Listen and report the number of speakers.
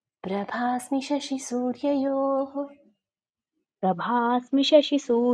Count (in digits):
2